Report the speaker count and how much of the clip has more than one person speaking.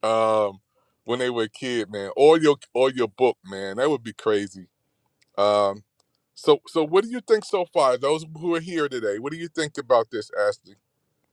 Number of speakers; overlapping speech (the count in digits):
1, no overlap